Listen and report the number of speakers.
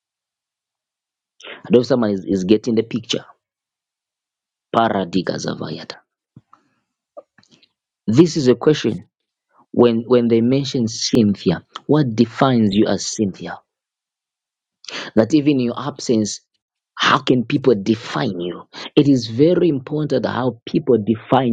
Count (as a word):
one